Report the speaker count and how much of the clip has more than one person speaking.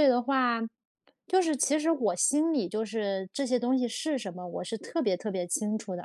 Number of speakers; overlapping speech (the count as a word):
one, no overlap